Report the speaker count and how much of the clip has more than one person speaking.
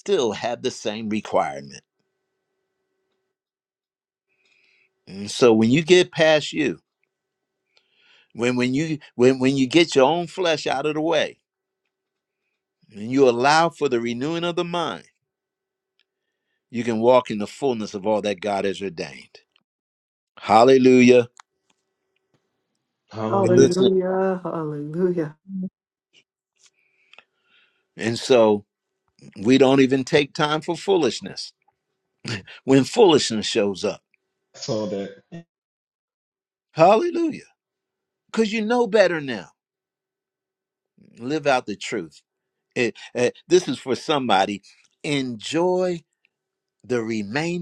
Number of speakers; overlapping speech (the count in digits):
3, about 1%